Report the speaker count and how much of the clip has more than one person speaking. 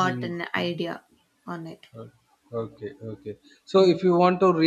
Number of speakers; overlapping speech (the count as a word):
two, about 18%